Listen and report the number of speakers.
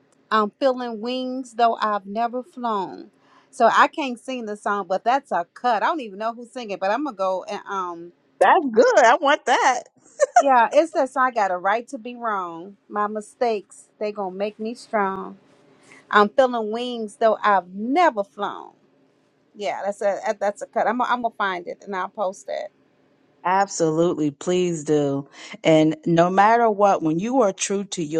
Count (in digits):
2